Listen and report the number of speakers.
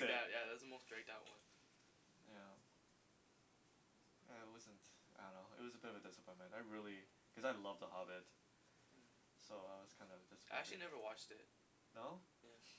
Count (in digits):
2